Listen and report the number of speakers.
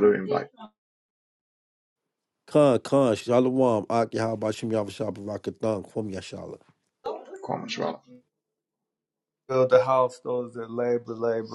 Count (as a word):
three